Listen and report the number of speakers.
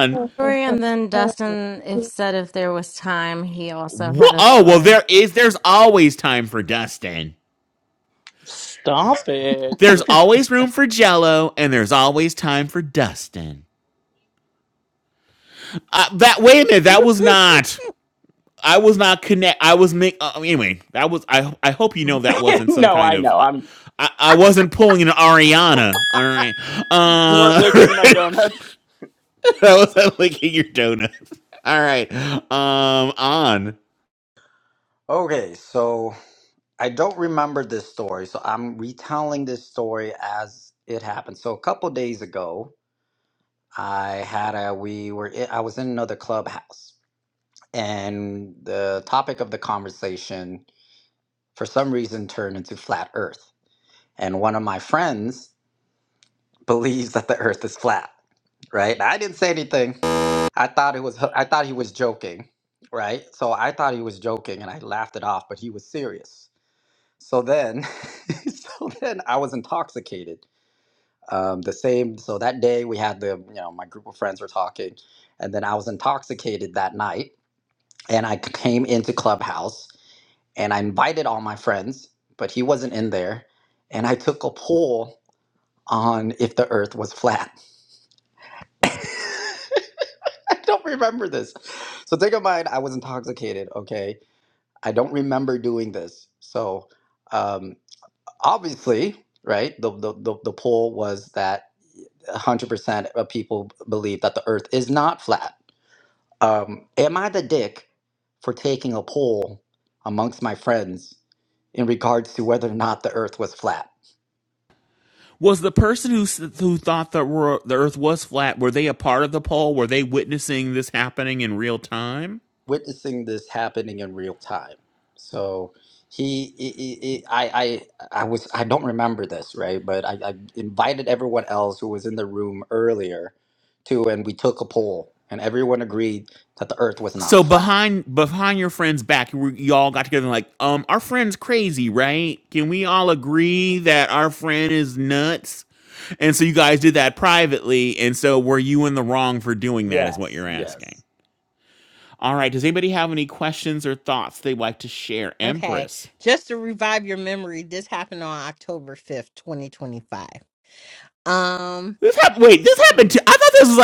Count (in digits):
5